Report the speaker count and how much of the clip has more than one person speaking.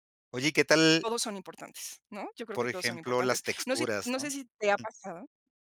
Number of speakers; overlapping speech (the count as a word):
two, about 33%